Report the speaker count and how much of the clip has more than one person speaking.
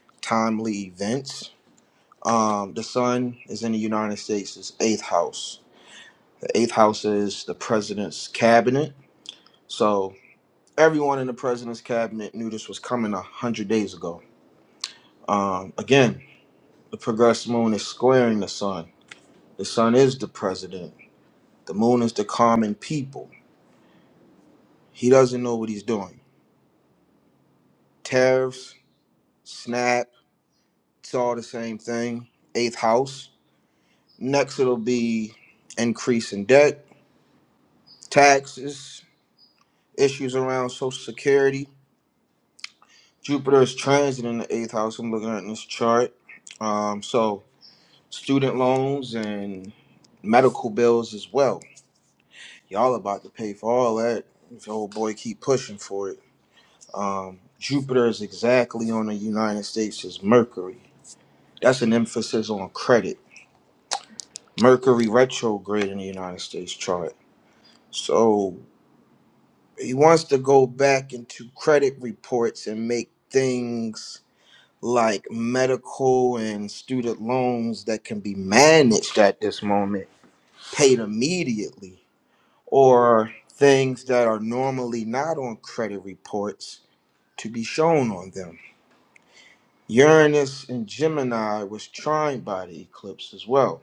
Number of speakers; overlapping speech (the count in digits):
1, no overlap